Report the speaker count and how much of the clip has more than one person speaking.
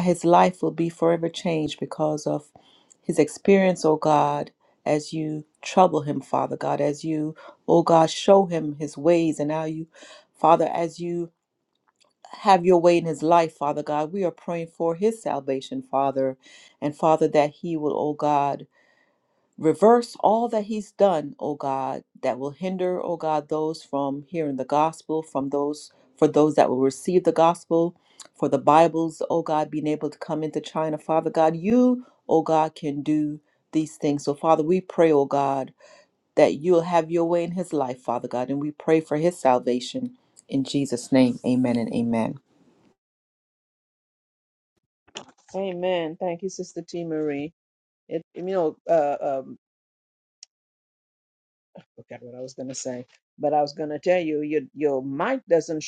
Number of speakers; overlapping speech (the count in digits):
2, no overlap